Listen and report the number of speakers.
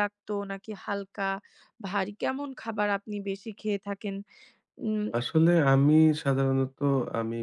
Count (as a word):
two